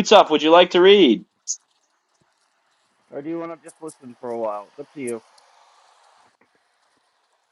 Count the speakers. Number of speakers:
2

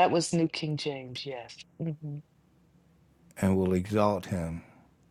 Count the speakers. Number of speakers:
2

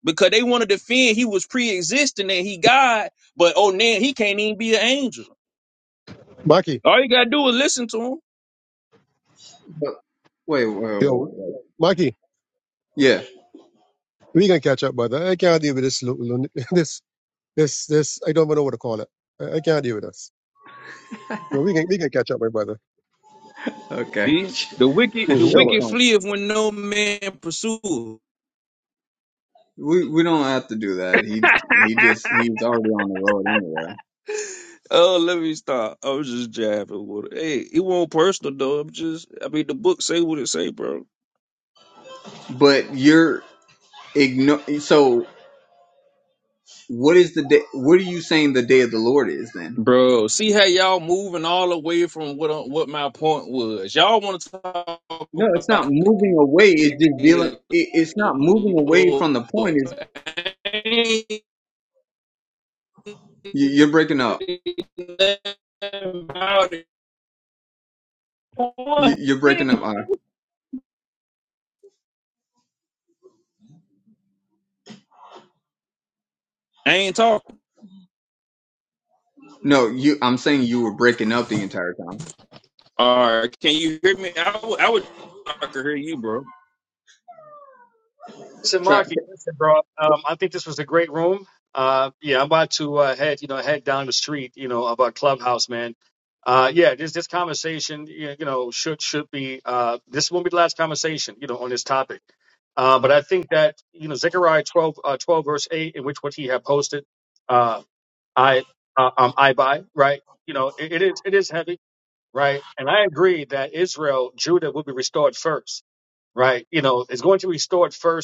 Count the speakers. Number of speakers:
4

